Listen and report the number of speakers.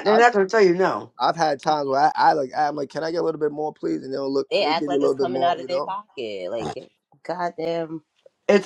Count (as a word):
three